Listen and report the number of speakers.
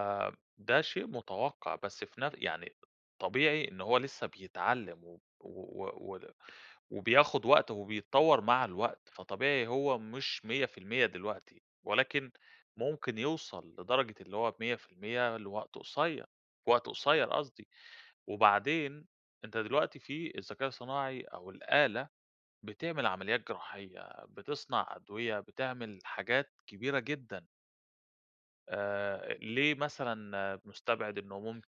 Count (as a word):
one